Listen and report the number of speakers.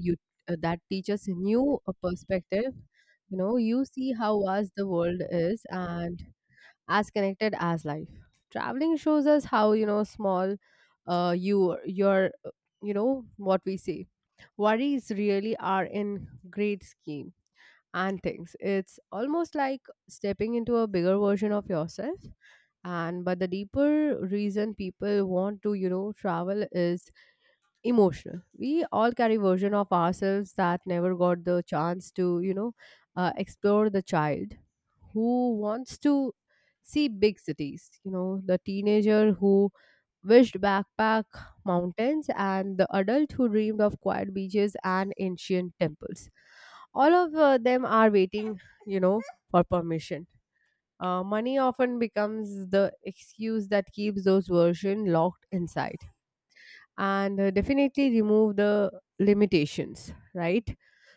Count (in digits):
1